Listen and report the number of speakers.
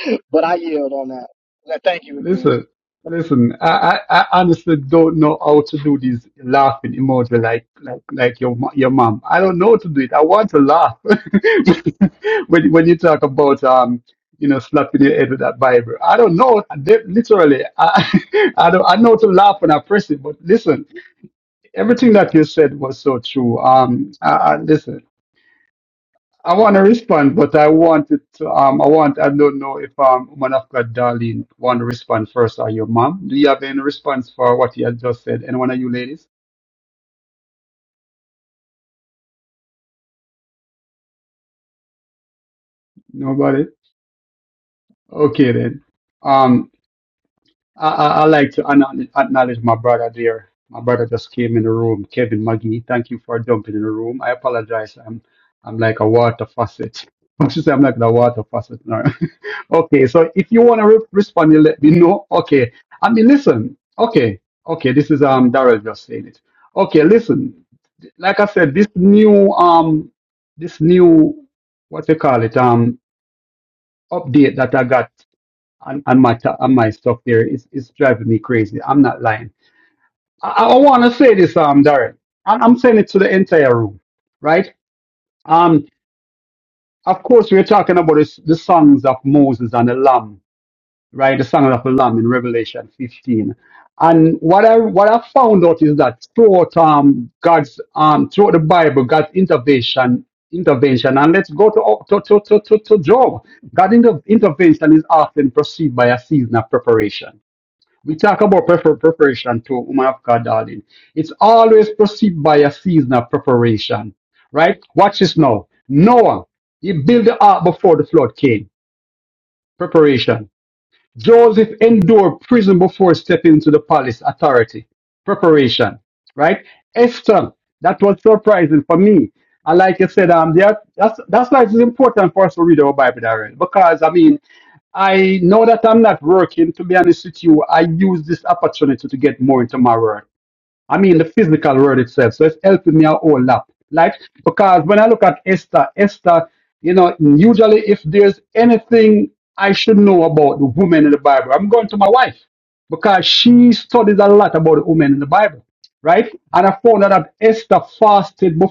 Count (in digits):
2